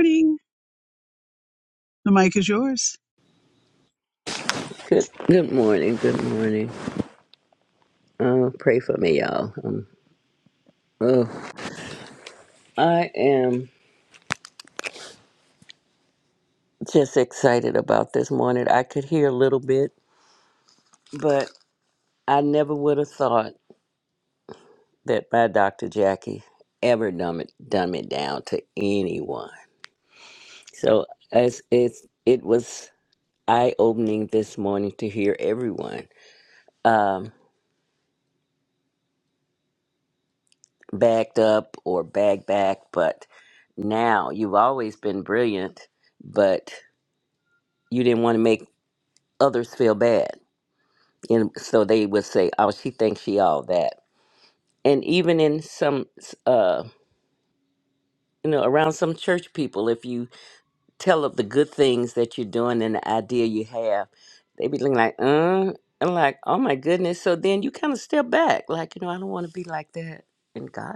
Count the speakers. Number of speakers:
2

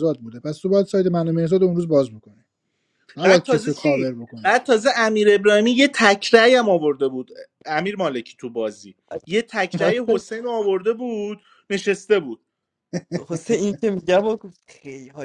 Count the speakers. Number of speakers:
3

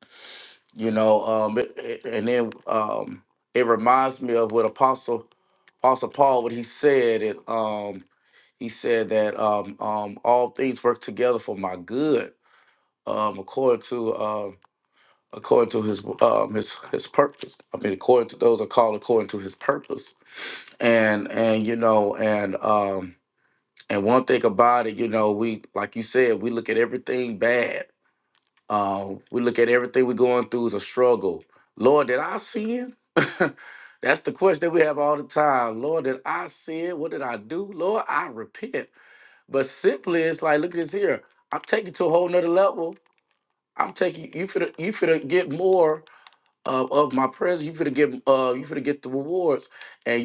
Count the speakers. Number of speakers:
1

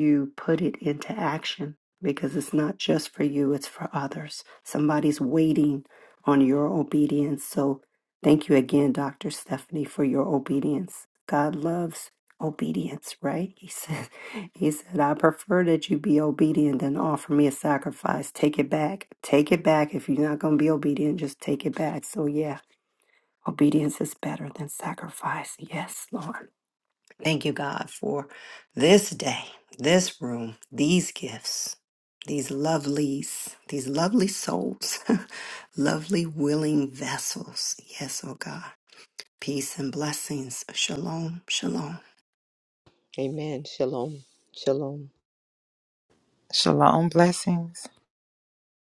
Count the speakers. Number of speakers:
3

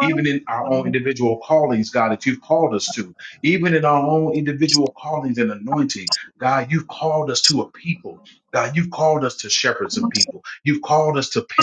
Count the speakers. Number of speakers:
1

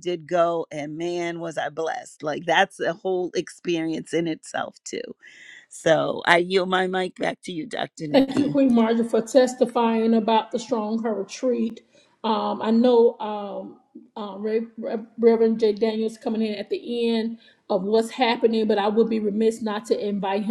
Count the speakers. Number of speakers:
2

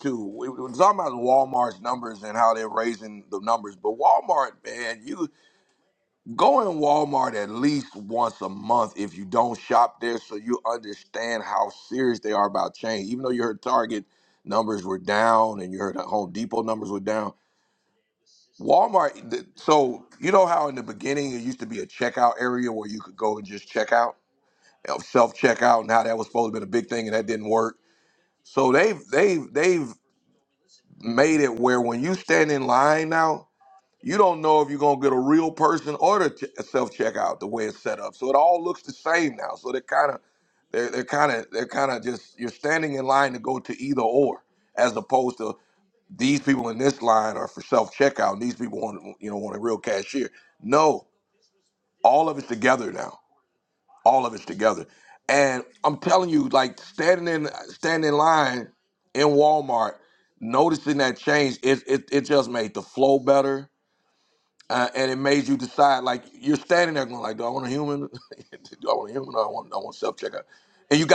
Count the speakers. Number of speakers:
1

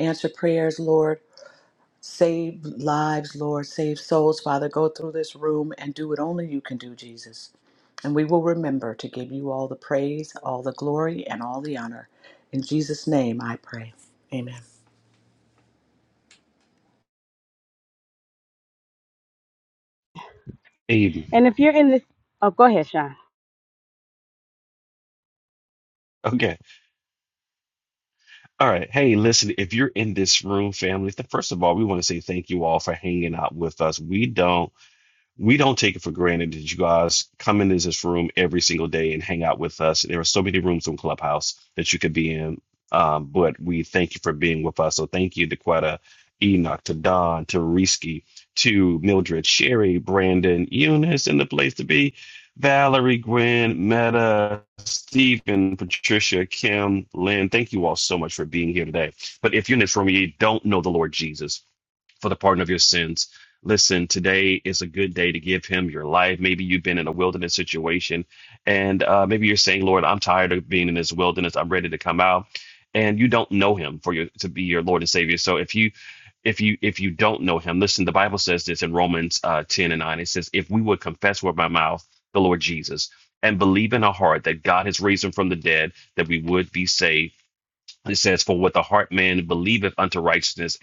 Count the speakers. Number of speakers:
3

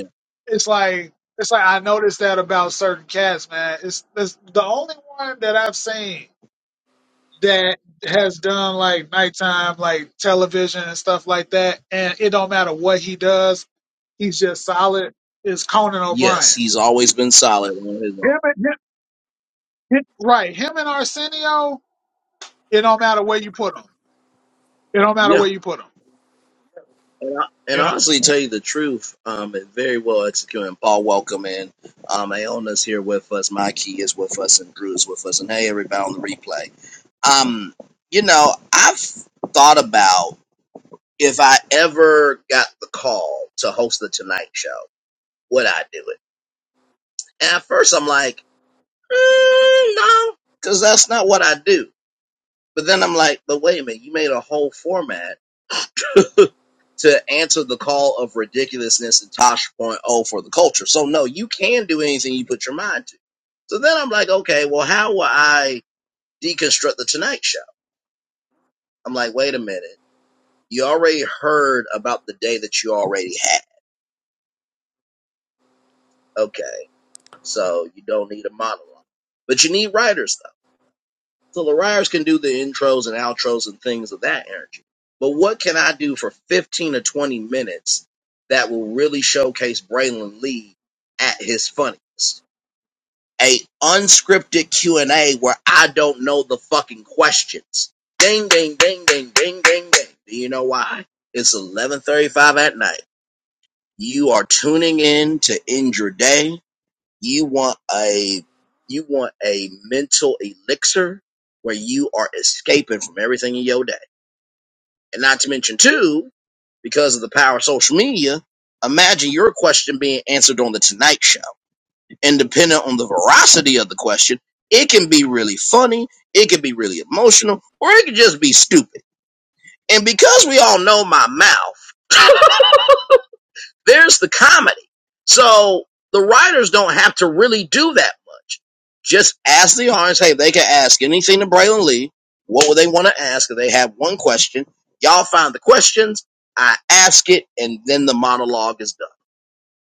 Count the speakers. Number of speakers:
2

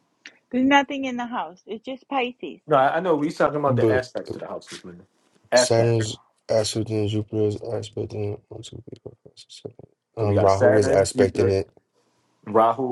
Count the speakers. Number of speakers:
3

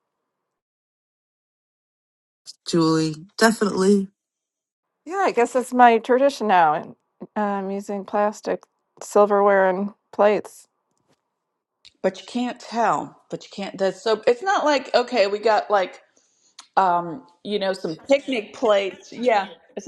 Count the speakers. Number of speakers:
3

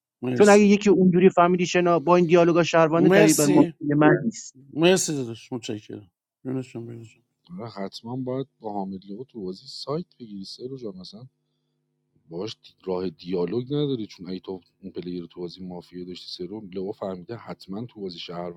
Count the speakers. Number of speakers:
3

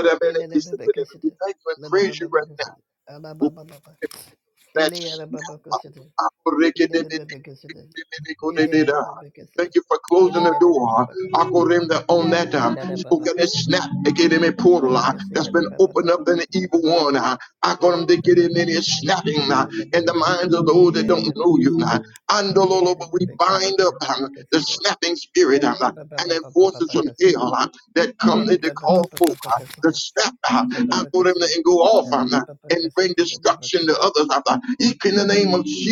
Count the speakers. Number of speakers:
2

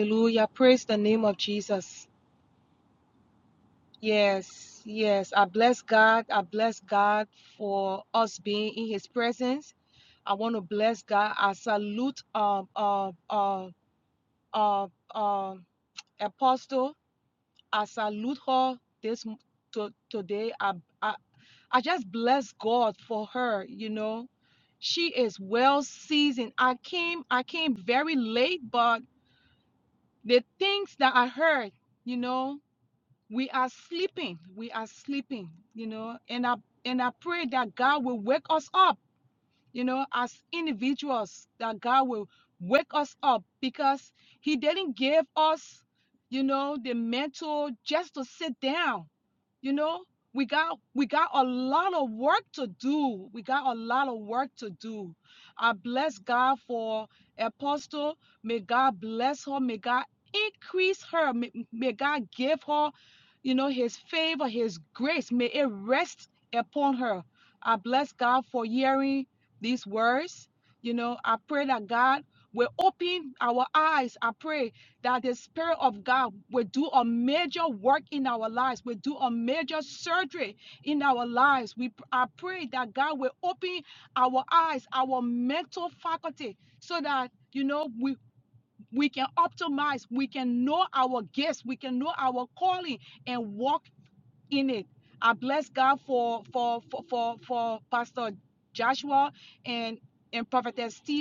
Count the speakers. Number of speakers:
1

